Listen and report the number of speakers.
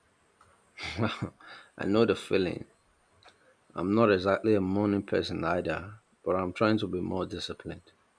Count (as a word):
one